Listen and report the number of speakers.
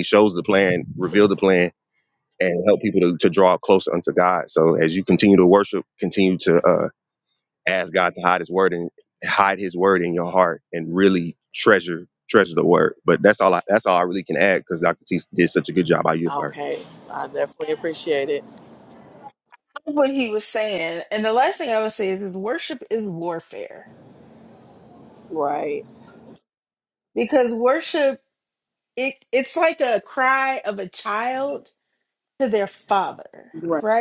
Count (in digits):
3